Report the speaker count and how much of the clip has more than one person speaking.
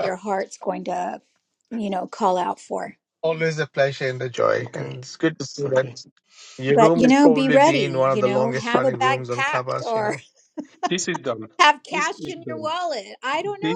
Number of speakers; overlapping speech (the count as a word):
three, about 37%